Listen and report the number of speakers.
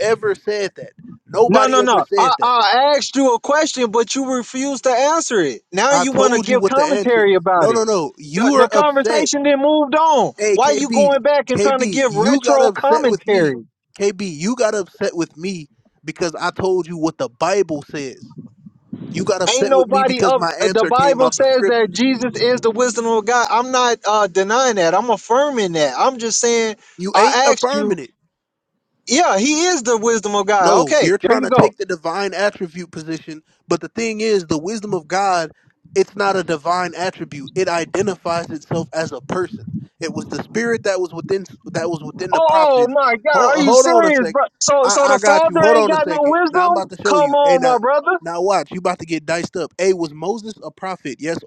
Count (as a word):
two